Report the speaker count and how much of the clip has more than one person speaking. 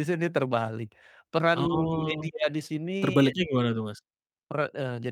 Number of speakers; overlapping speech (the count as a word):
two, about 7%